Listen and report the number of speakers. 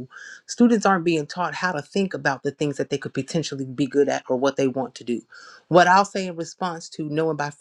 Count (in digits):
1